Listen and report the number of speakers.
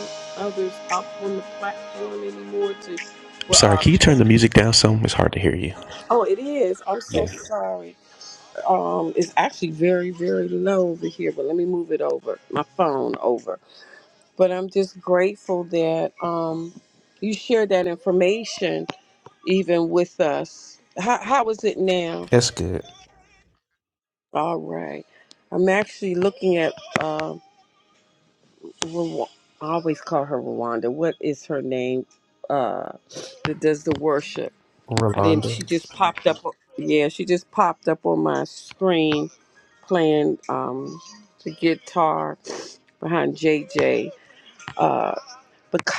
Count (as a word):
two